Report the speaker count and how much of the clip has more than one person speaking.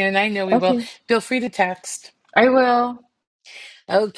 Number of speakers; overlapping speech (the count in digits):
2, about 9%